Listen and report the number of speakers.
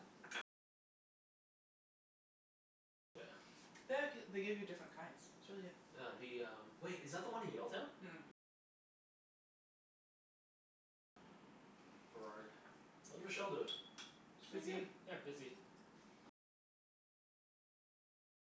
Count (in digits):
3